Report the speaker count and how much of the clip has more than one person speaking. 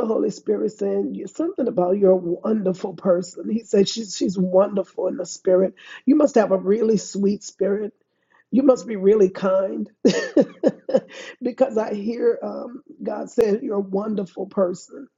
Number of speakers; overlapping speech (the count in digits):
1, no overlap